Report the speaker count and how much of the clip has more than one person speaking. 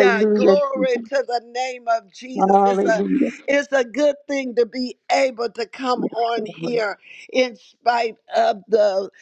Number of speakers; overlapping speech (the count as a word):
two, about 17%